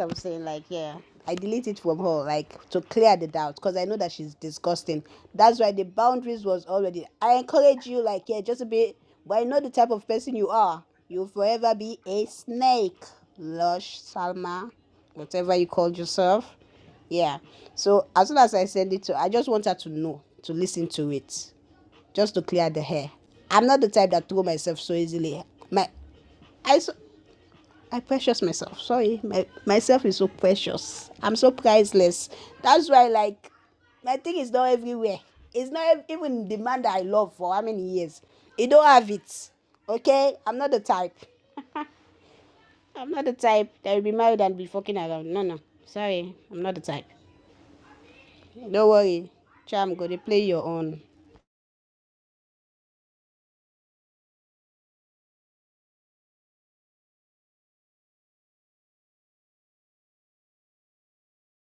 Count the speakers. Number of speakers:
one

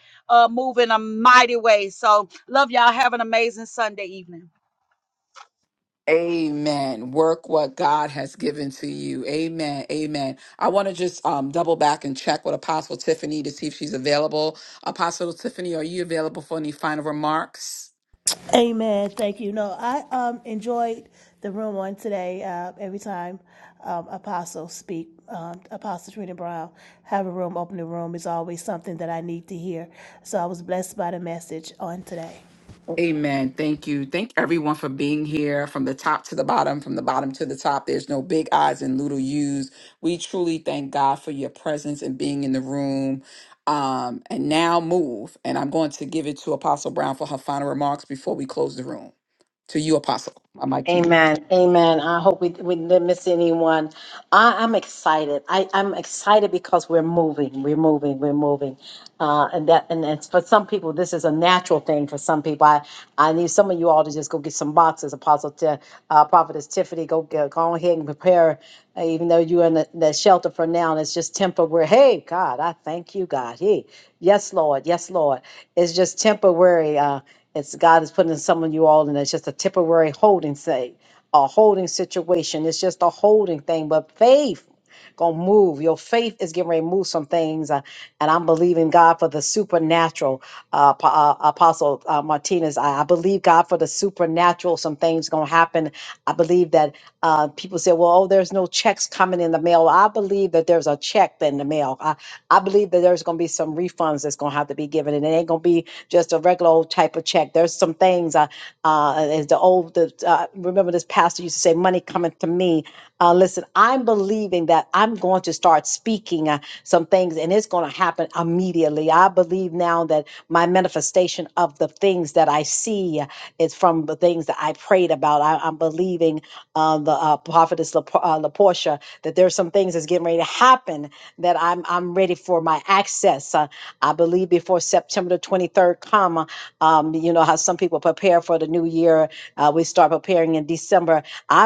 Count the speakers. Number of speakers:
four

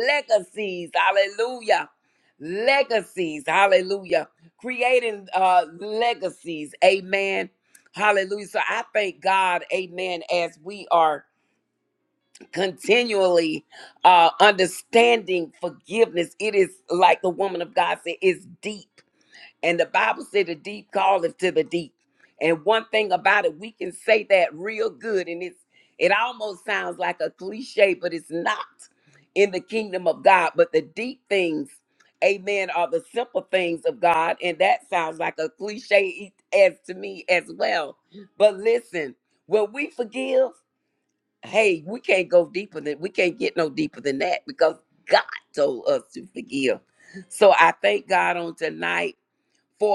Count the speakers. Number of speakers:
one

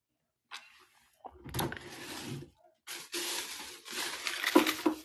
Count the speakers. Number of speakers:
zero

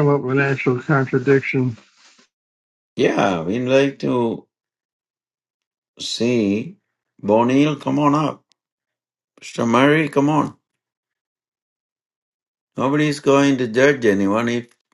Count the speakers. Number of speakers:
two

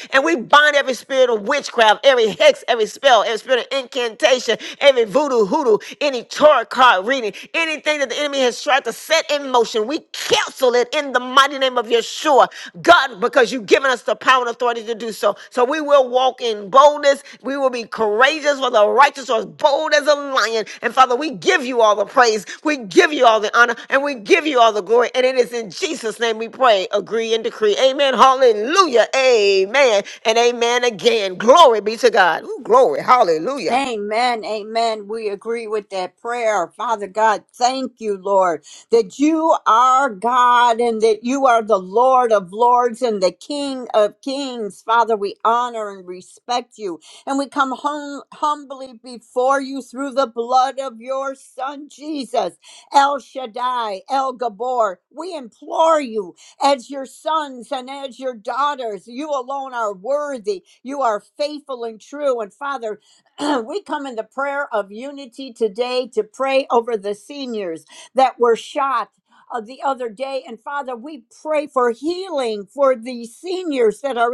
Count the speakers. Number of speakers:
two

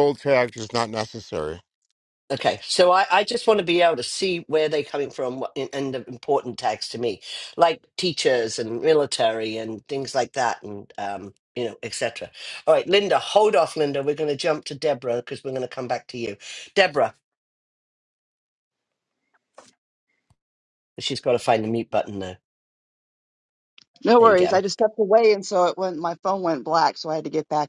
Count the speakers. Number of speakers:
three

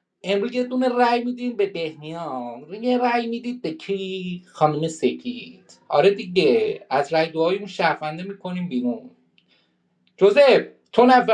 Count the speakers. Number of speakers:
one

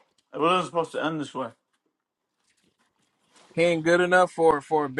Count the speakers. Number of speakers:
two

